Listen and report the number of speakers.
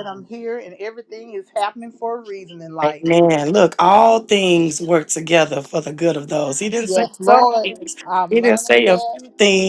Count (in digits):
2